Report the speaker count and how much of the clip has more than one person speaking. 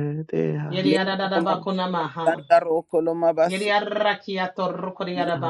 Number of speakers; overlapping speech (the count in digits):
3, about 33%